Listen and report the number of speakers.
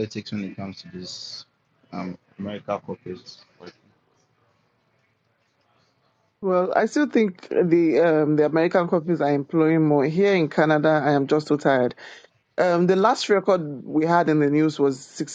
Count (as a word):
two